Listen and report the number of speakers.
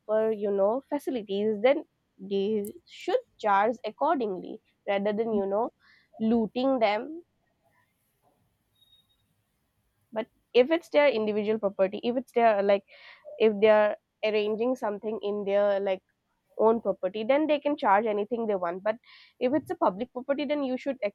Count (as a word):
one